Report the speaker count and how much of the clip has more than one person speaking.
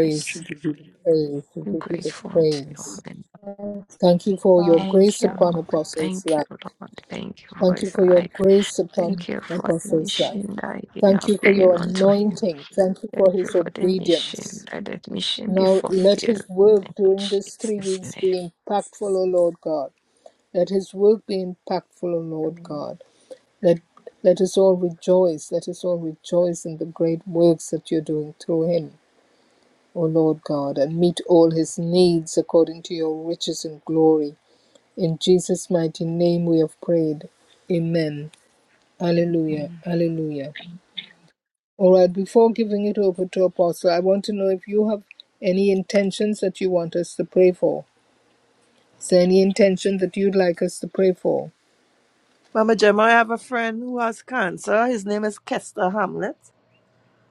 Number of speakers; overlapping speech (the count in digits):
4, about 20%